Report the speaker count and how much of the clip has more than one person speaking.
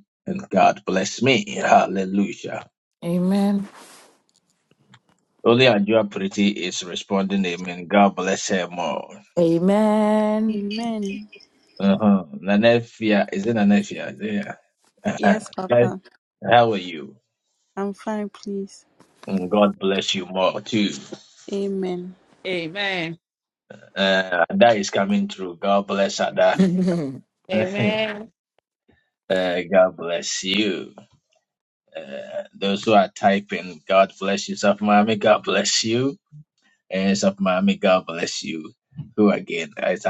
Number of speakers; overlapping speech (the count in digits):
4, about 2%